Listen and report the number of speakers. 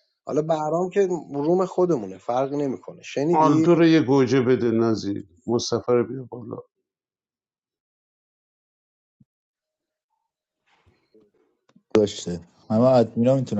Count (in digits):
3